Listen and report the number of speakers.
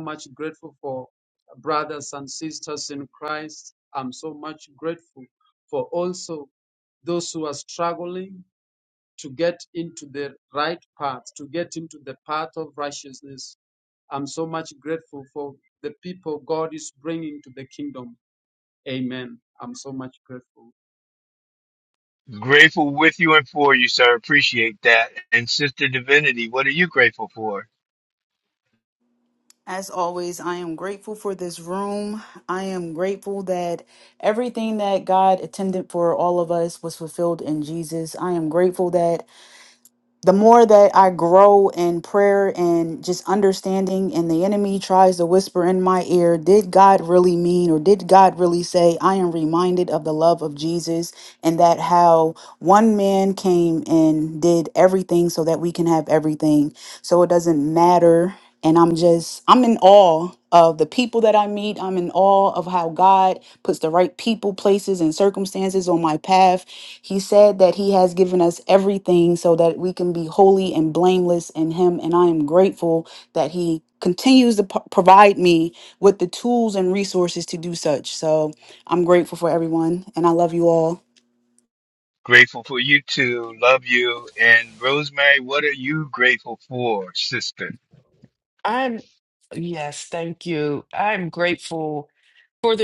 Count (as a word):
four